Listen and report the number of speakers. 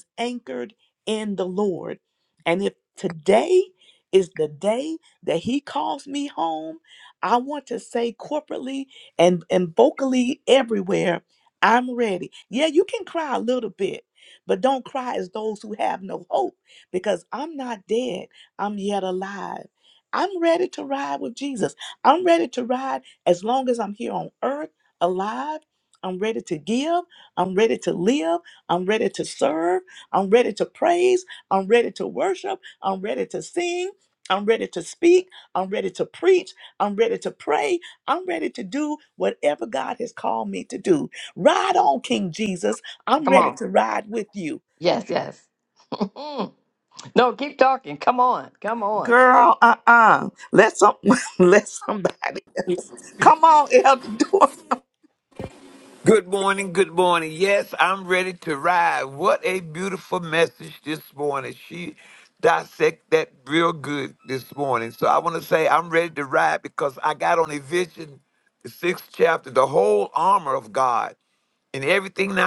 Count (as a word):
three